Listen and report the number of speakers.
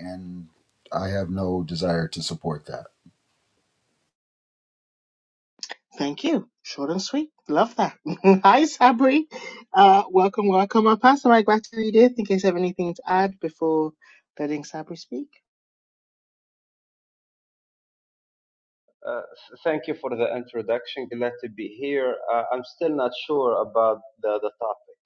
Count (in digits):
3